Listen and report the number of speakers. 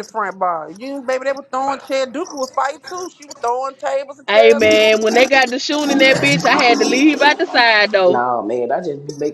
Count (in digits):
3